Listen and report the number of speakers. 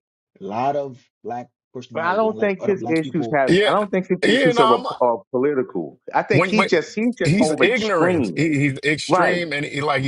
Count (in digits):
3